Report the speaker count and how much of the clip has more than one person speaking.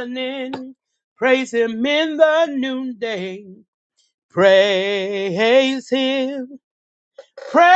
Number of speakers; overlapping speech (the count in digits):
1, no overlap